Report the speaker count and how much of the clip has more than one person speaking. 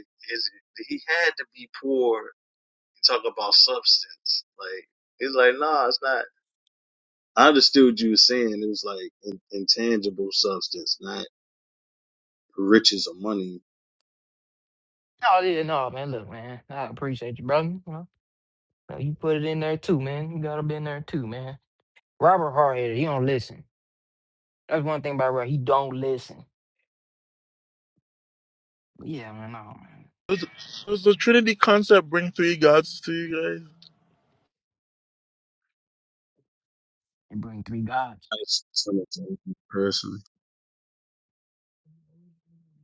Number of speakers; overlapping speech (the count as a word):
three, no overlap